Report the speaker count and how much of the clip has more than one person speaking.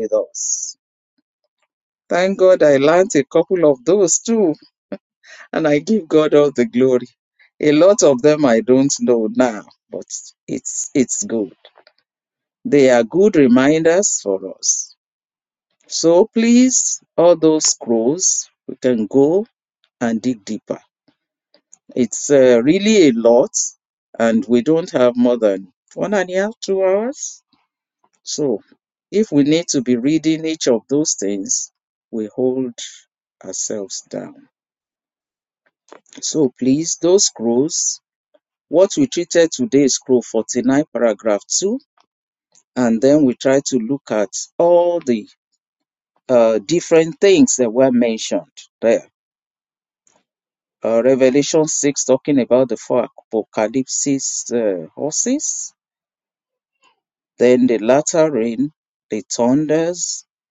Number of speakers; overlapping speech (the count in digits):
1, no overlap